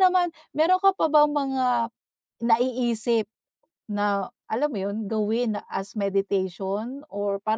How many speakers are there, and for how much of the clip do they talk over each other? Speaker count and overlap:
1, no overlap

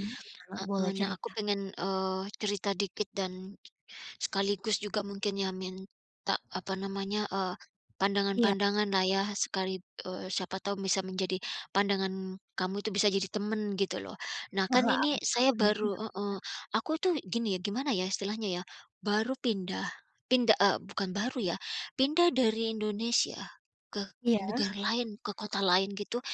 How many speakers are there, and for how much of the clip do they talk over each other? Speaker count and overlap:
2, about 8%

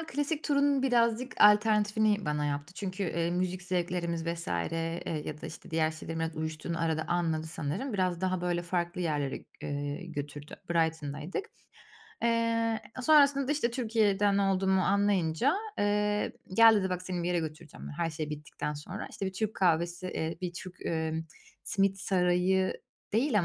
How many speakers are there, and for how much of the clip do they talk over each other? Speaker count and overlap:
1, no overlap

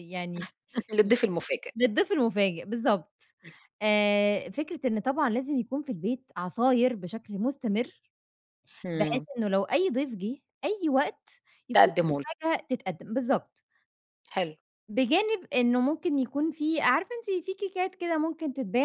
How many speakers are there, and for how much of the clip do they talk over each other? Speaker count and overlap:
2, about 5%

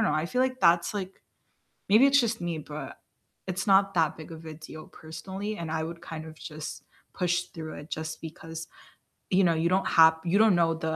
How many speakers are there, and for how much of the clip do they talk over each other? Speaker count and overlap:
1, no overlap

